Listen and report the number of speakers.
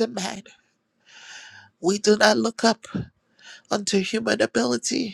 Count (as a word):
one